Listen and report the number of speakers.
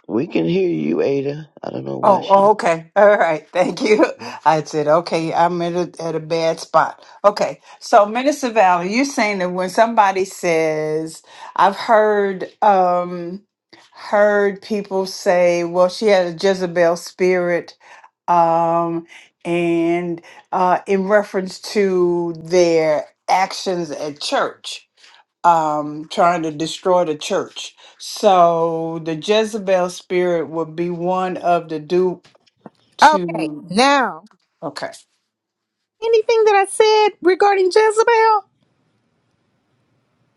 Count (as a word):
three